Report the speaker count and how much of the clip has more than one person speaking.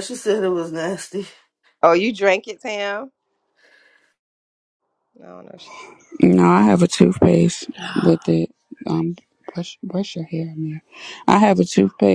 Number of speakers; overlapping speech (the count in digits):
3, no overlap